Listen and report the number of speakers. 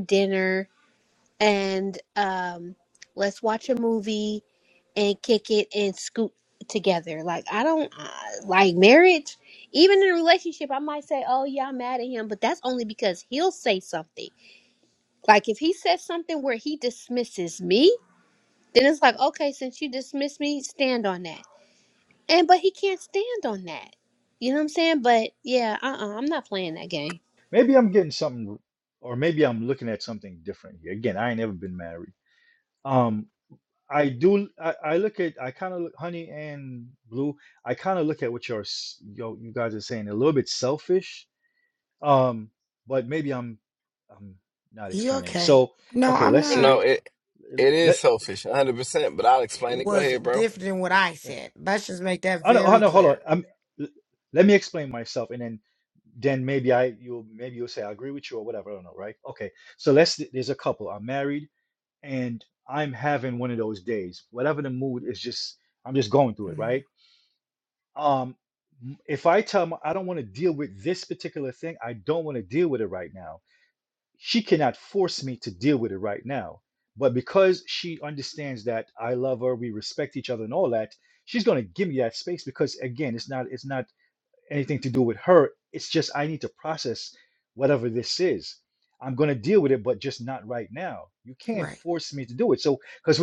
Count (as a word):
four